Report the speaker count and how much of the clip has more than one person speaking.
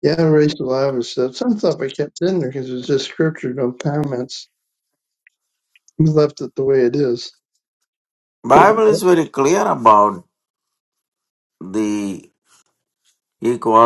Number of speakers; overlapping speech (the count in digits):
2, about 2%